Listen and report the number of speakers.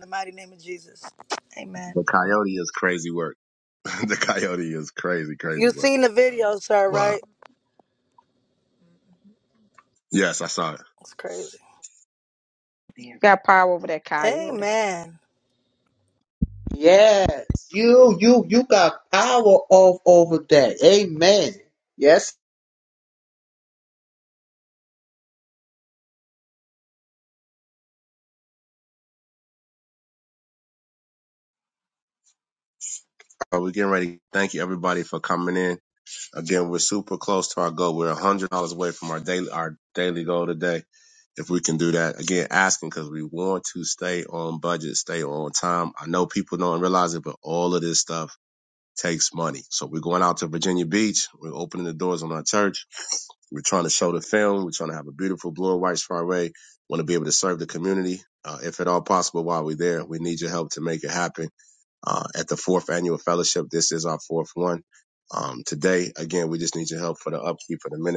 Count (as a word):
four